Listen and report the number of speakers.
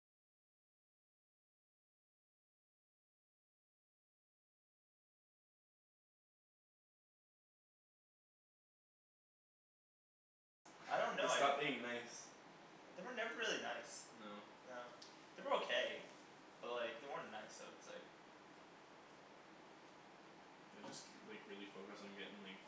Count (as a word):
two